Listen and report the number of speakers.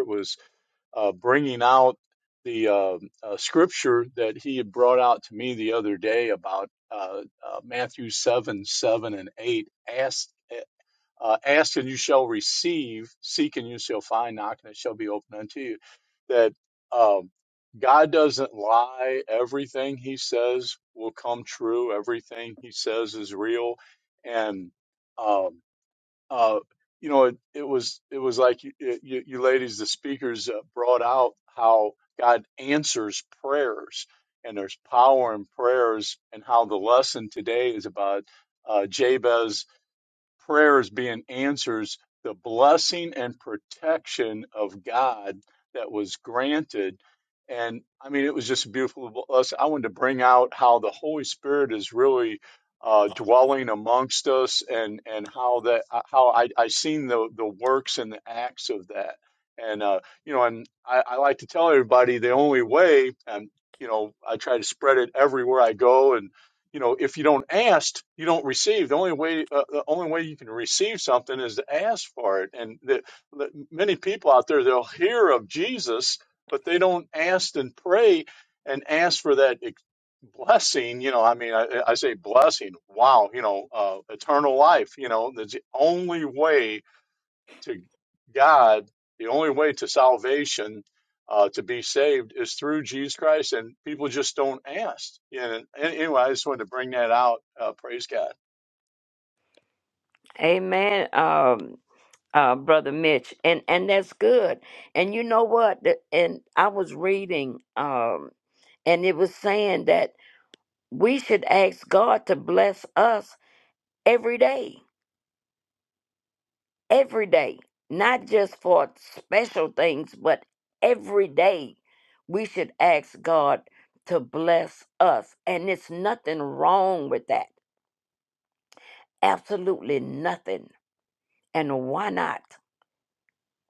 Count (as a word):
two